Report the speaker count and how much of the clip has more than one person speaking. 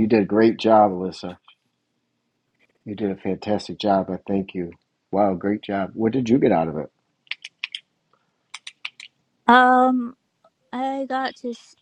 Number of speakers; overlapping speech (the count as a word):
two, no overlap